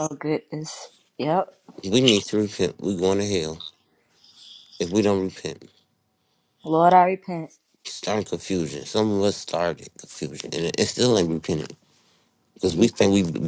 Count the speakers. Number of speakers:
2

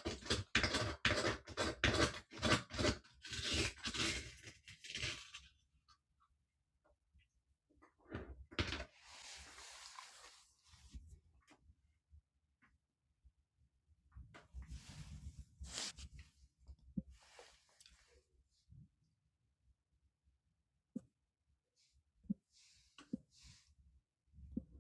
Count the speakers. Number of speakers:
0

